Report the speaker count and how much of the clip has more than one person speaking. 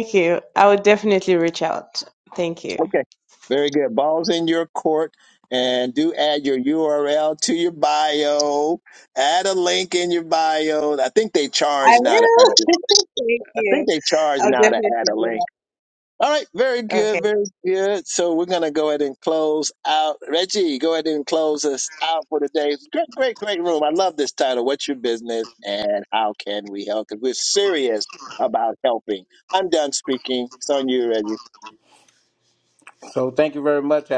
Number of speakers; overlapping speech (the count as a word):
three, about 7%